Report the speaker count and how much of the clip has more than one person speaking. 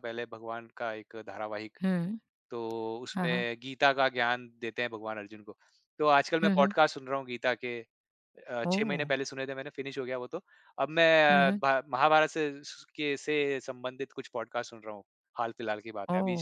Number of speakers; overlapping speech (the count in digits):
2, about 10%